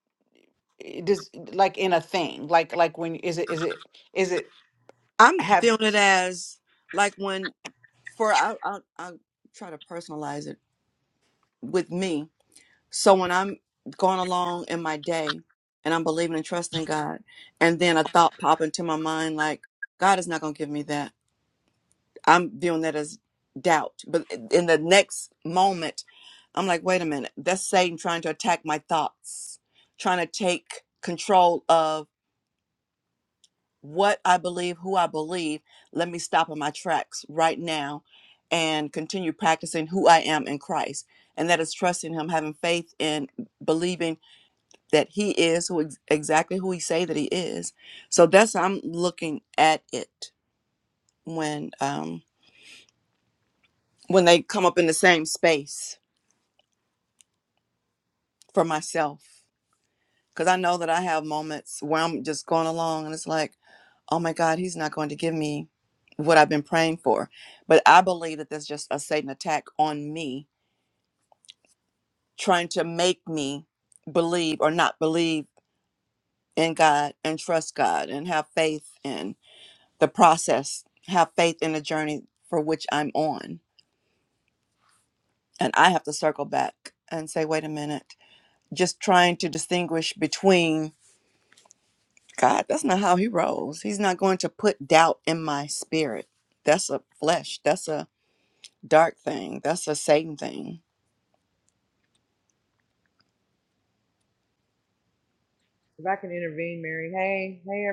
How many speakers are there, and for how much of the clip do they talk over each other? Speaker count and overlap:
3, under 1%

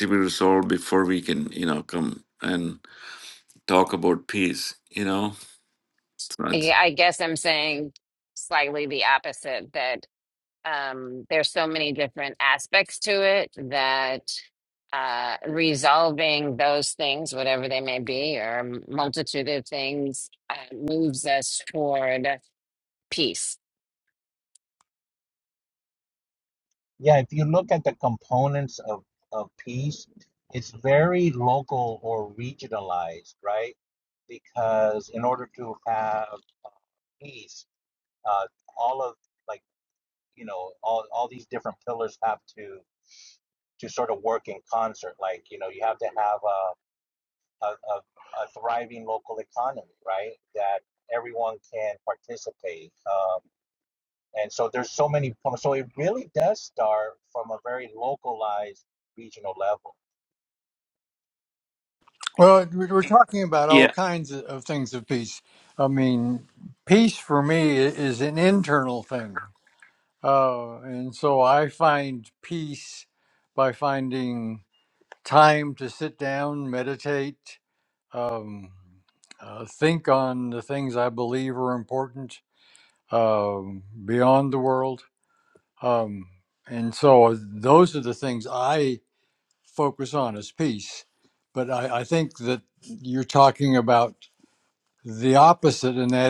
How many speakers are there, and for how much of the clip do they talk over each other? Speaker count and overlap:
4, under 1%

